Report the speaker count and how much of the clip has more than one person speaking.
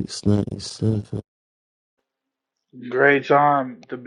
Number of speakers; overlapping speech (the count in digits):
2, no overlap